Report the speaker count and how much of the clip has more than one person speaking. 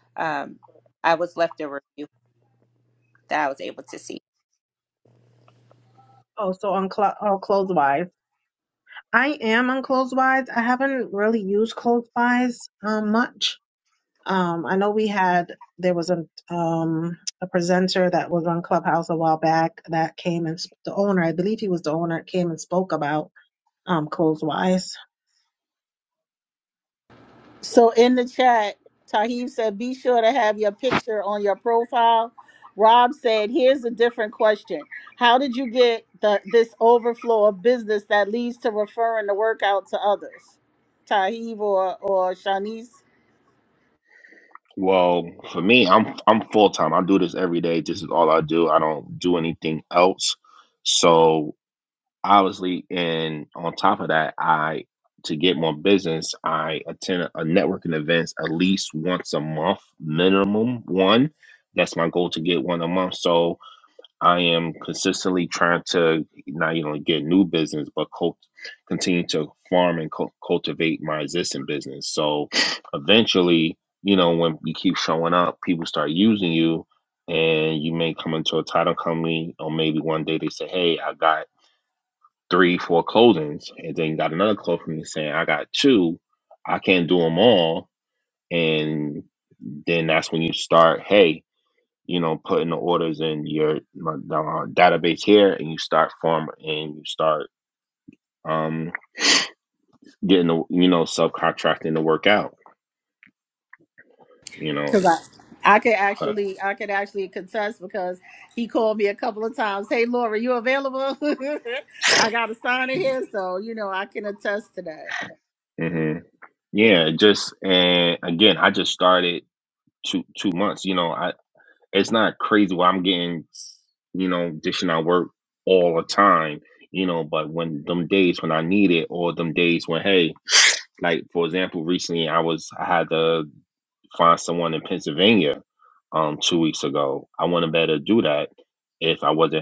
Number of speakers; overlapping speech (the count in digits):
4, under 1%